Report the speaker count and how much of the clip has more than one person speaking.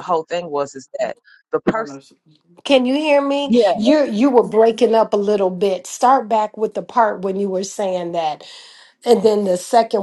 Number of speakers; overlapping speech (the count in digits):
2, about 3%